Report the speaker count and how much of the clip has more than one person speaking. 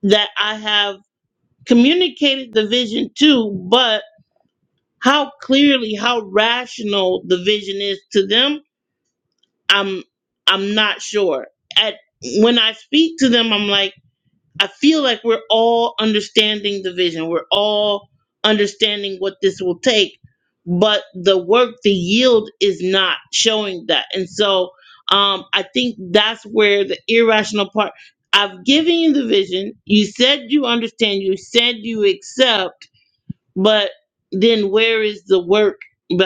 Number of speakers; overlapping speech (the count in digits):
1, no overlap